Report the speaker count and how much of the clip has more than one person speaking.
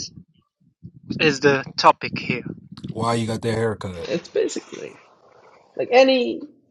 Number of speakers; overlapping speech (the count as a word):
three, about 1%